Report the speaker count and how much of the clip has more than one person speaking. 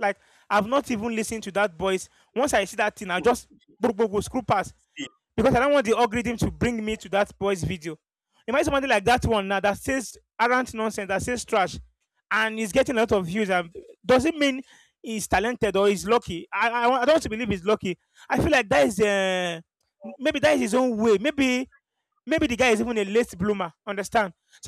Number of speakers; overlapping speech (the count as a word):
one, no overlap